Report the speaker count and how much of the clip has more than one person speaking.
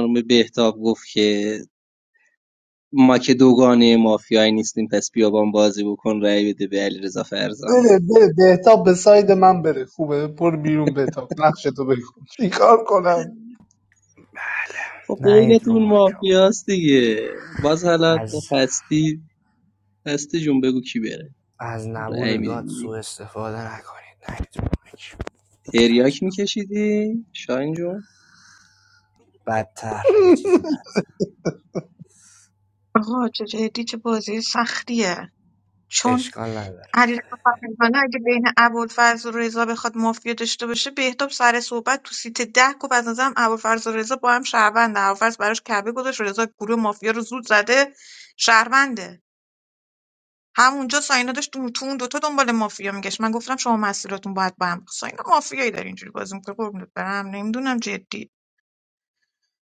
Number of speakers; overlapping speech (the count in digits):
4, about 5%